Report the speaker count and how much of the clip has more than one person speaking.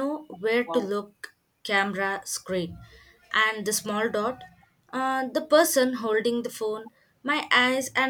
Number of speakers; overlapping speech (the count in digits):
1, no overlap